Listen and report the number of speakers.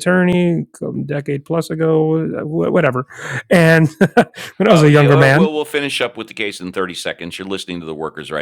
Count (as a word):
two